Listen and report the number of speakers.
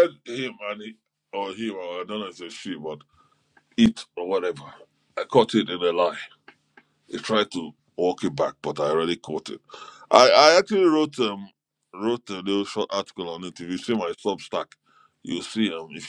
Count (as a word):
one